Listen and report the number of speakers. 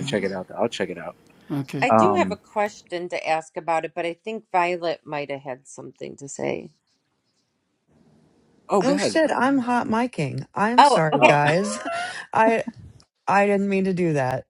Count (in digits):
3